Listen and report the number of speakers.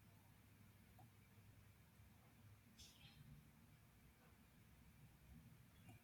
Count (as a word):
zero